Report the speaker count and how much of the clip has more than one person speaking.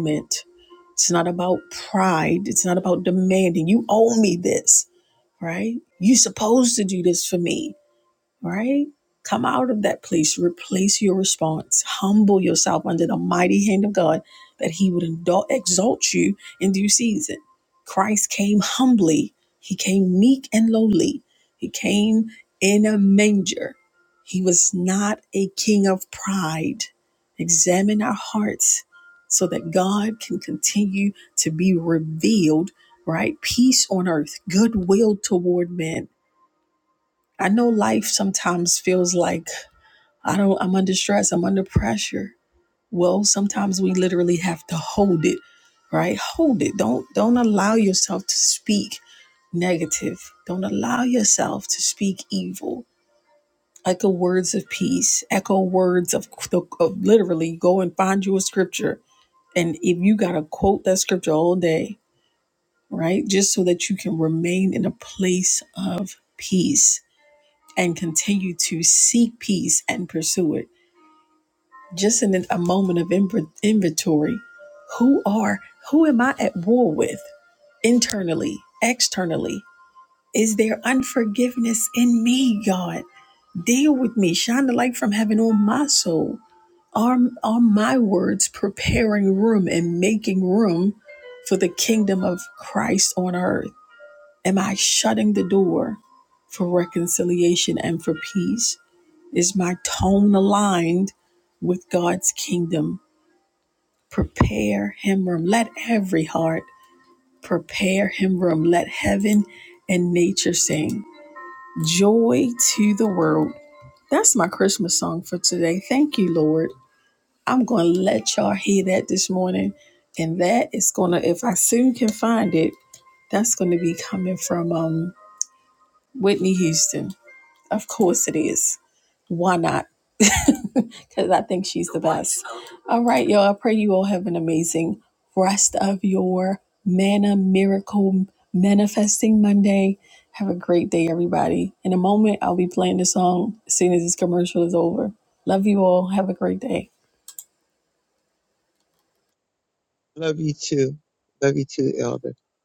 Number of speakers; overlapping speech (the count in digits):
2, no overlap